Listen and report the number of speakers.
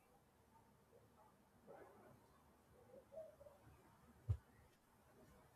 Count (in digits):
0